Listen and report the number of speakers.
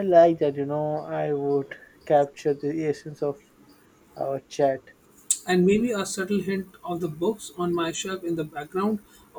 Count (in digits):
2